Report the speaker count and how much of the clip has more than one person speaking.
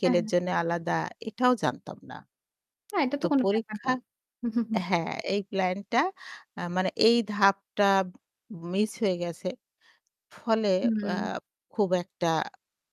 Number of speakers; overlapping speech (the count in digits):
2, about 9%